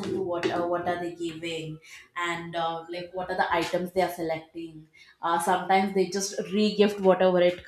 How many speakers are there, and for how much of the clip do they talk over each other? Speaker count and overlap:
1, no overlap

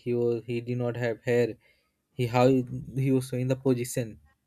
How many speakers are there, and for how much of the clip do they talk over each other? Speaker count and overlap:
1, no overlap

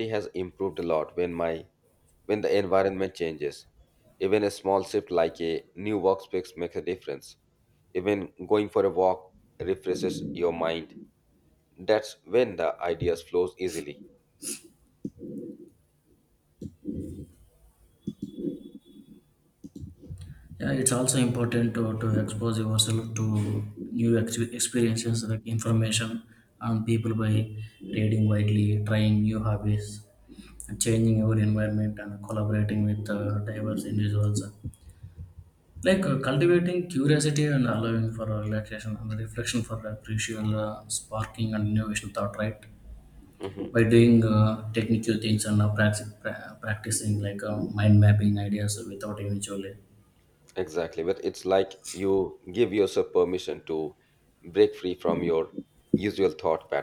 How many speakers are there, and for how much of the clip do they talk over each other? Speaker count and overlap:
2, under 1%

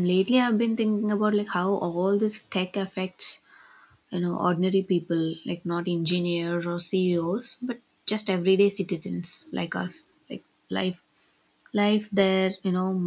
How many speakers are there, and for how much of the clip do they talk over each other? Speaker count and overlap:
1, no overlap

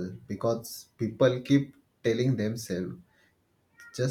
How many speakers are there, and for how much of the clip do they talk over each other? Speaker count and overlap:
1, no overlap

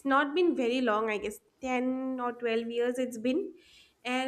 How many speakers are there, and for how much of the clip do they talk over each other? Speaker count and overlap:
1, no overlap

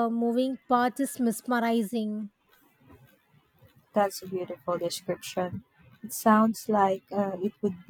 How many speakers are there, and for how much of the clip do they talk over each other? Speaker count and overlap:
2, no overlap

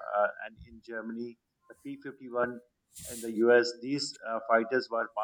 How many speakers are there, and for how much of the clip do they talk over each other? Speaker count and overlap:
1, no overlap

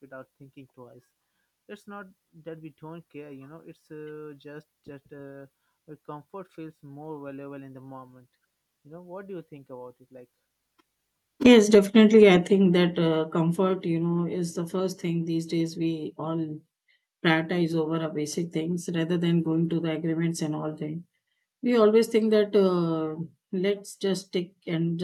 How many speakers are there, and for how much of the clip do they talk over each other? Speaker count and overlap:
2, no overlap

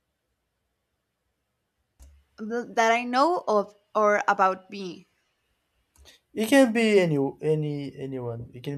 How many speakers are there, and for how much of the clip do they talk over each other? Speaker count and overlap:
2, no overlap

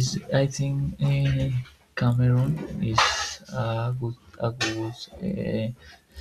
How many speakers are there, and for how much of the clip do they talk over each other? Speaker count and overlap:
1, no overlap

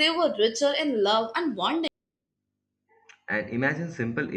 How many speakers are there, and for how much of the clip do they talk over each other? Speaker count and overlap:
2, no overlap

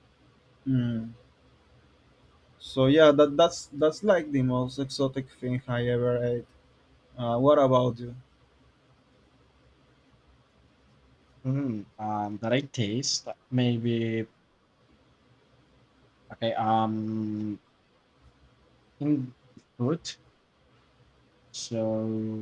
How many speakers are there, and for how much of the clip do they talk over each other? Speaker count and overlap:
2, no overlap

